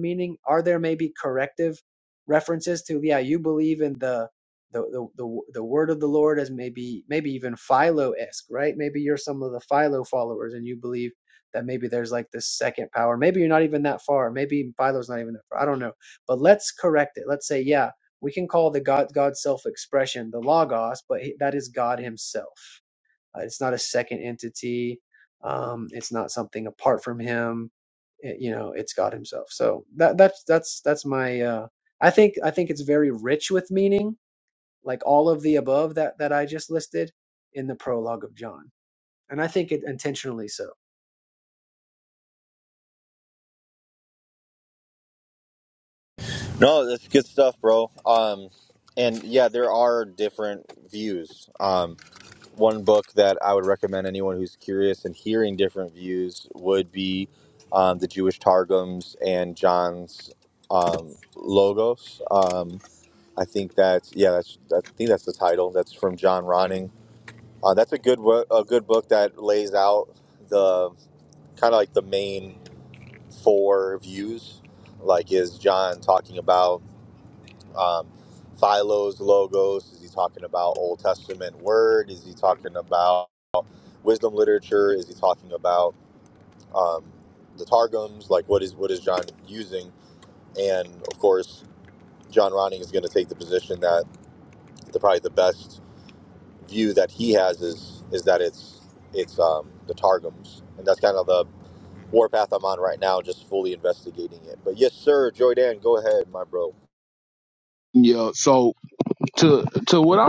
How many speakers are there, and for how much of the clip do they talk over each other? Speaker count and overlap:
three, no overlap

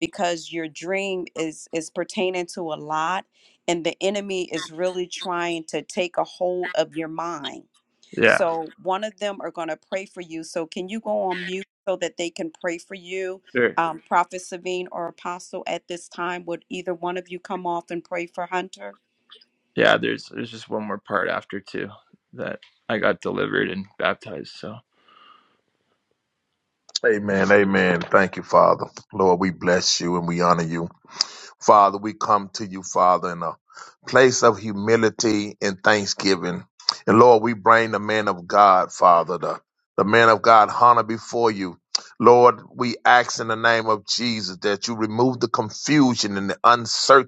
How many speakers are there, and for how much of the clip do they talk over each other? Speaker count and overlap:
three, under 1%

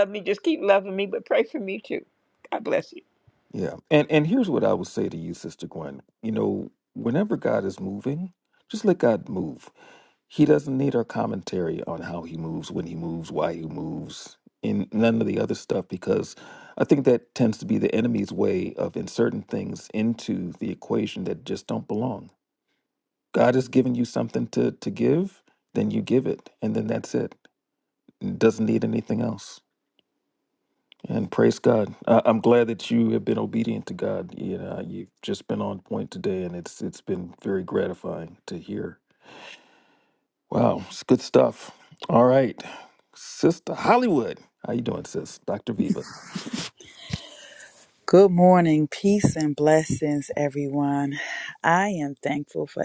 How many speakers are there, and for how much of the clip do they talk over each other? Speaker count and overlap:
three, no overlap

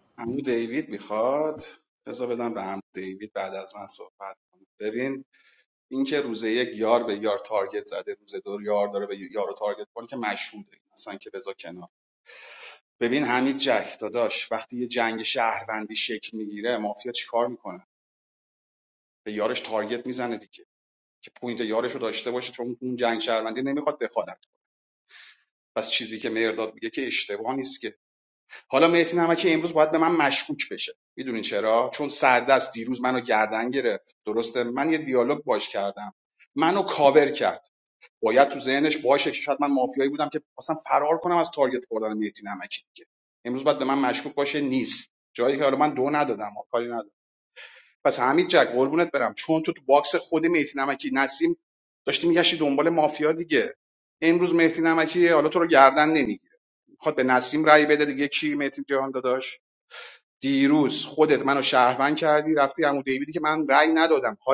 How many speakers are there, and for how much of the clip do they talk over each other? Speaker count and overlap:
one, no overlap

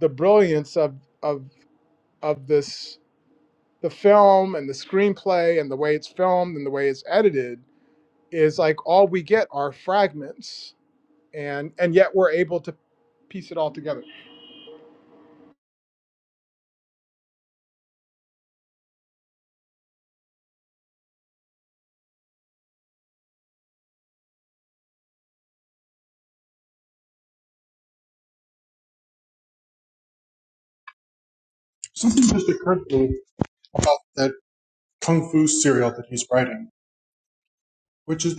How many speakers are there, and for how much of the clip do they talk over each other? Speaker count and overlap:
two, no overlap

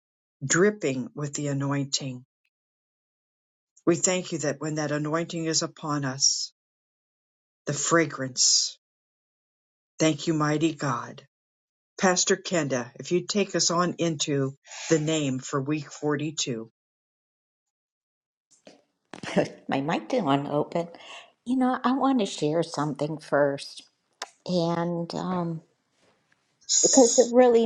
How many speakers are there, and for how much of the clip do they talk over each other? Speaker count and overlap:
two, no overlap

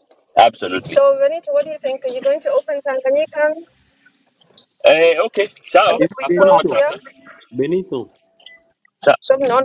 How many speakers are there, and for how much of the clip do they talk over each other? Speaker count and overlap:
three, about 13%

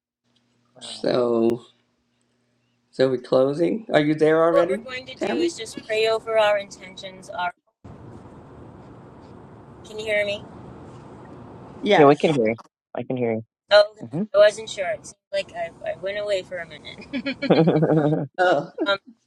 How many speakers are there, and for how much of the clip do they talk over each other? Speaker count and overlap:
three, about 6%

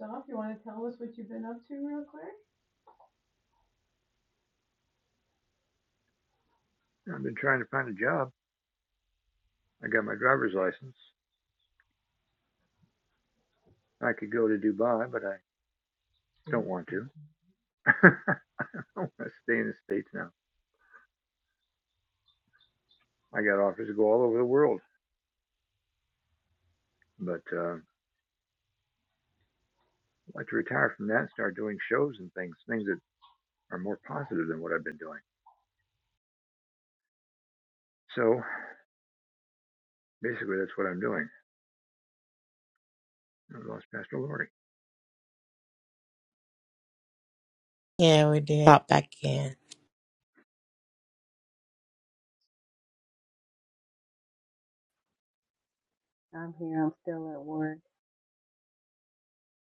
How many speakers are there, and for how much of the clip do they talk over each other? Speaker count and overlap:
four, about 1%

